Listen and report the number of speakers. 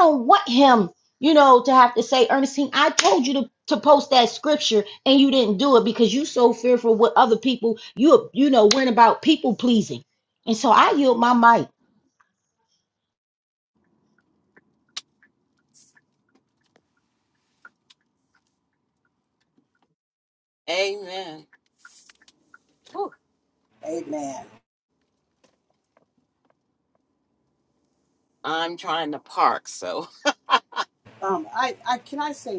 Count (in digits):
3